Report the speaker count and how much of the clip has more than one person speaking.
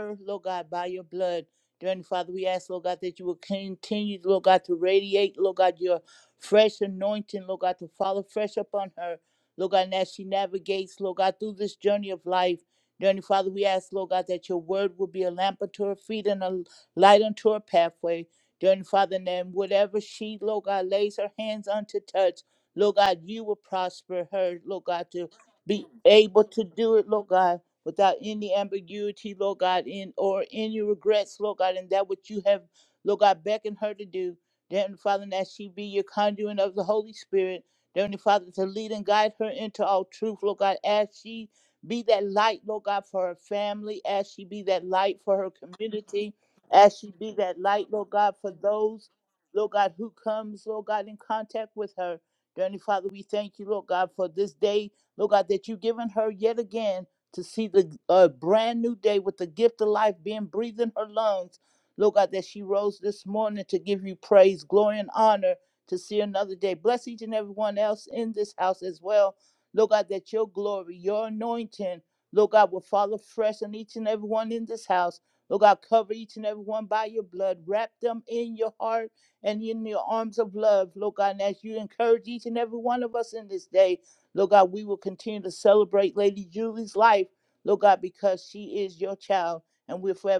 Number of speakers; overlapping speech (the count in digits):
1, no overlap